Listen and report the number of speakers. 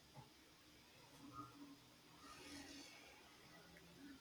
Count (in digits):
0